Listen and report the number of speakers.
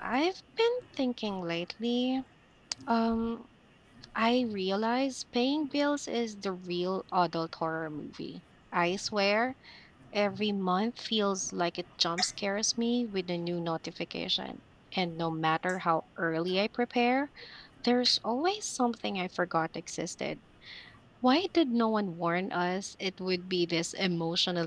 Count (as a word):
one